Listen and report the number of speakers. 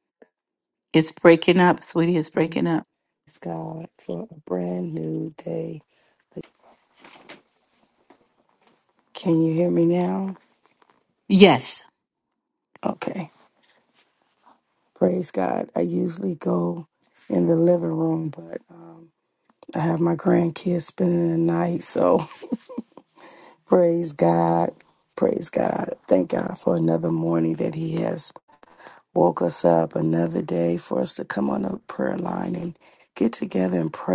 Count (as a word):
two